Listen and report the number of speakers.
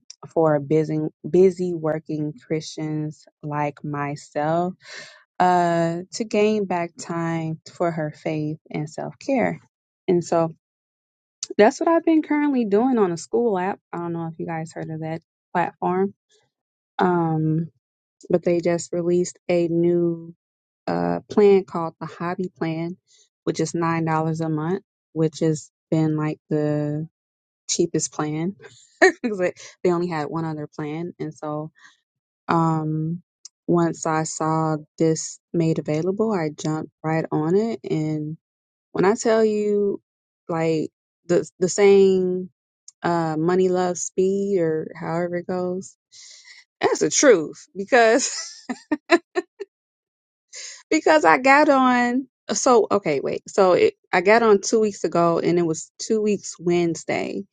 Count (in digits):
1